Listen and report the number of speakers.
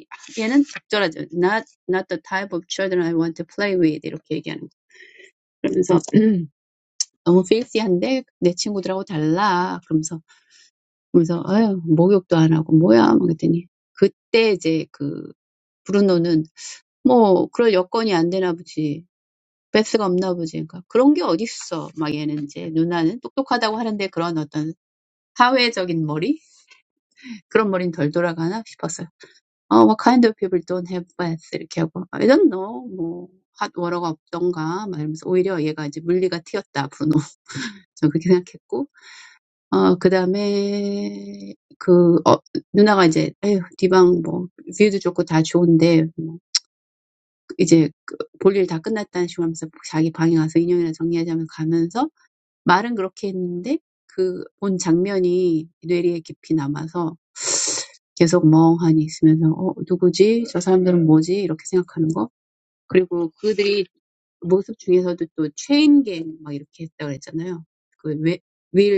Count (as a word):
one